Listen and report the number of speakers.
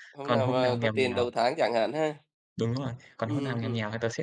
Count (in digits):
2